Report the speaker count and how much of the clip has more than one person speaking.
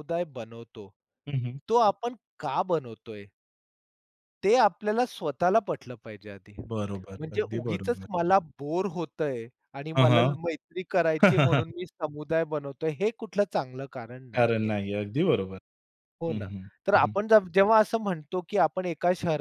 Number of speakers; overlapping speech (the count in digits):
2, about 11%